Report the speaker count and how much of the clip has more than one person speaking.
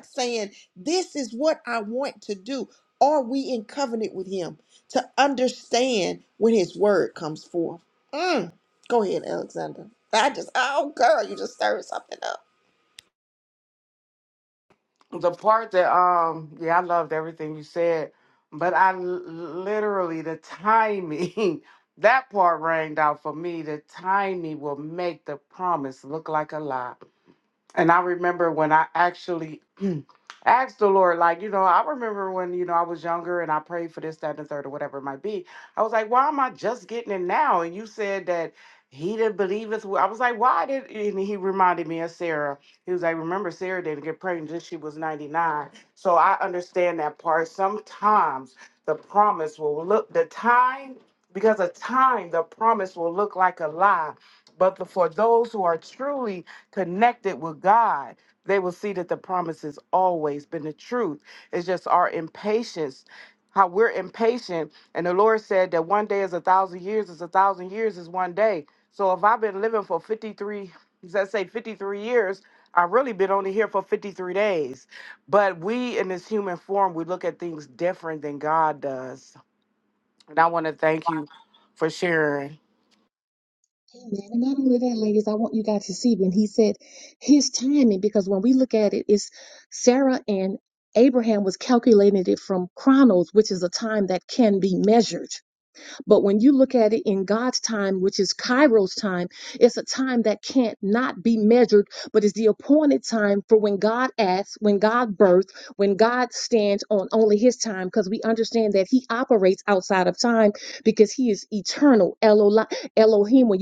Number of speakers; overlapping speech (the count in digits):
3, no overlap